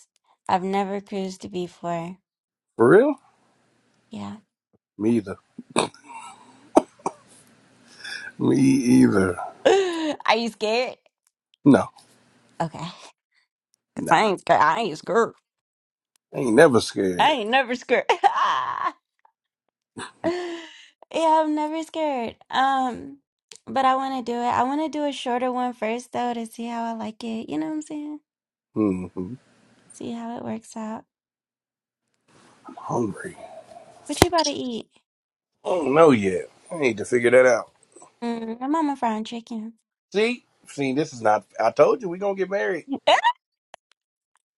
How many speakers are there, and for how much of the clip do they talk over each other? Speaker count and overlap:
2, under 1%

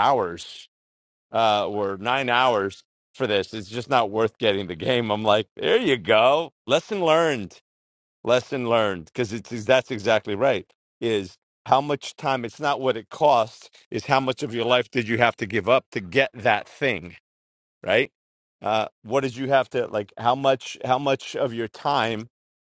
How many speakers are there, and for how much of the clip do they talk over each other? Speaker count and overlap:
1, no overlap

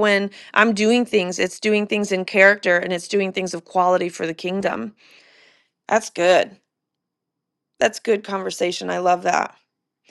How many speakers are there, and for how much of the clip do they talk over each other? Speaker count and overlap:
1, no overlap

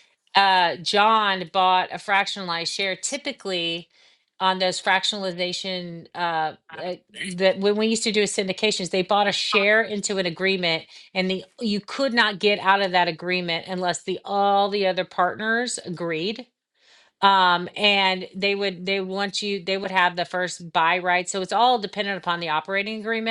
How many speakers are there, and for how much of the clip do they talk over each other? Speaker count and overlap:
1, no overlap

